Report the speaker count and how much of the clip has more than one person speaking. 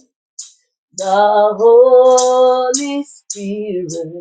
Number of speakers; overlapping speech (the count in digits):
1, no overlap